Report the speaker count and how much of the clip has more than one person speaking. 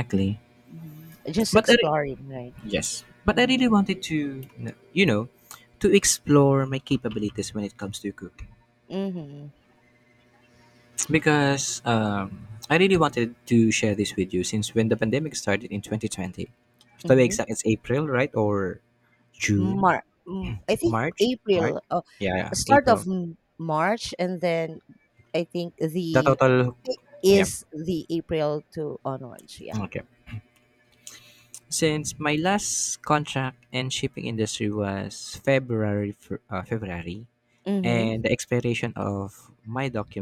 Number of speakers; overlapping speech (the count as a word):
two, about 7%